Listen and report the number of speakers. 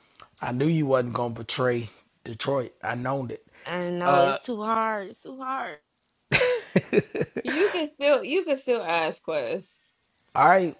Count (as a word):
three